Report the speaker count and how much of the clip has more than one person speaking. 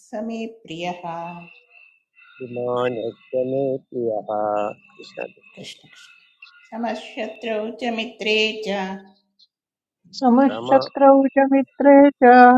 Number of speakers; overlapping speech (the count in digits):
3, about 2%